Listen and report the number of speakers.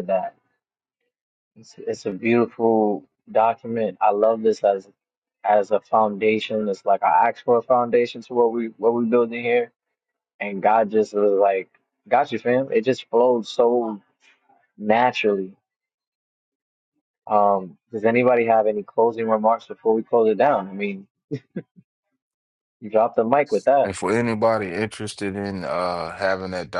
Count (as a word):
two